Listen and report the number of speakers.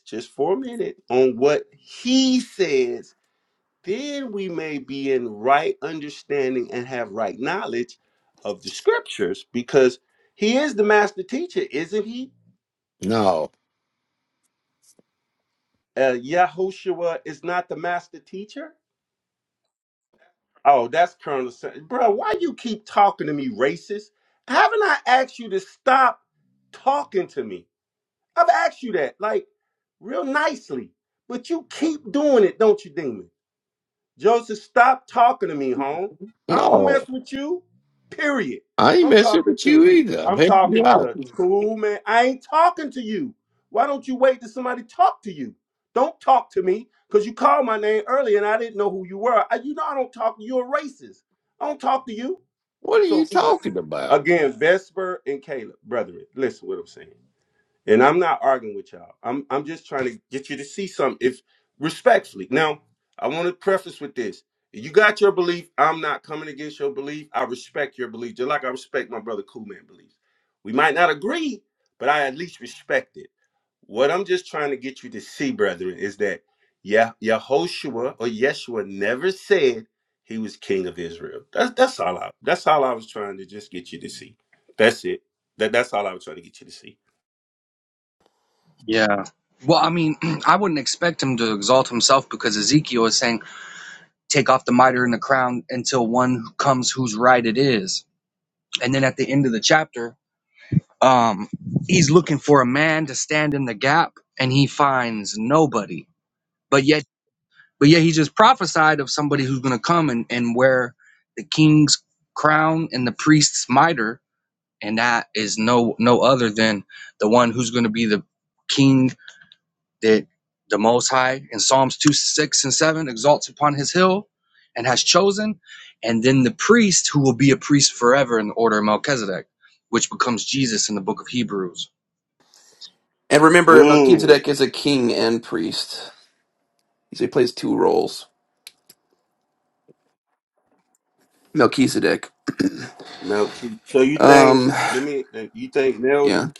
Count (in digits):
4